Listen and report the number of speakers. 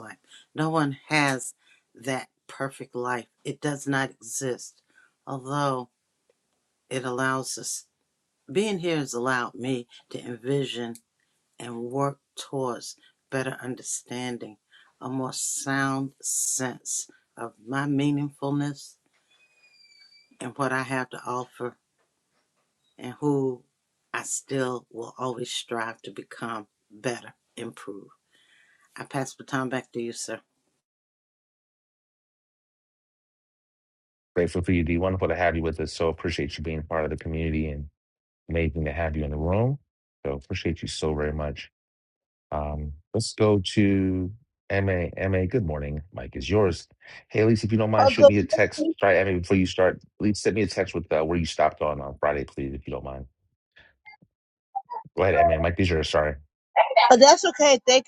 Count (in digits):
3